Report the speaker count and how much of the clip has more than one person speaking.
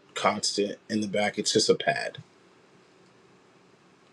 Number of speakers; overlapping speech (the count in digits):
1, no overlap